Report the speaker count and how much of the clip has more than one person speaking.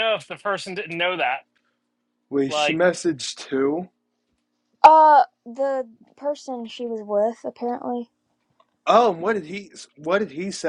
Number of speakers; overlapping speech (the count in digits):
3, about 3%